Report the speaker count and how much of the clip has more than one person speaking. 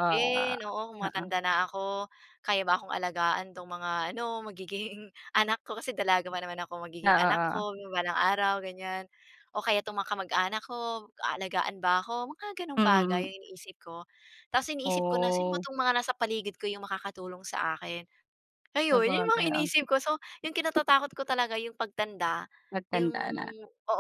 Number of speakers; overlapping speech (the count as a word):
two, about 16%